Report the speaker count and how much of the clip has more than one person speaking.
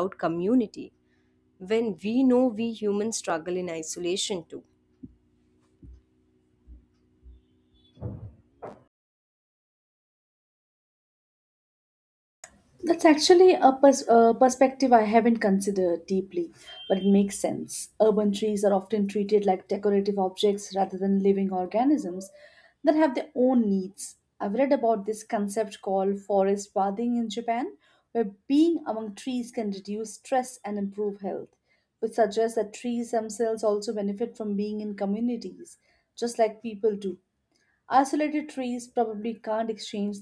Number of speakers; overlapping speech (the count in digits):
2, no overlap